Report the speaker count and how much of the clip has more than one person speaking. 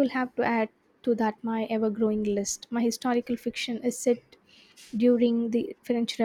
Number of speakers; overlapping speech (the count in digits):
1, no overlap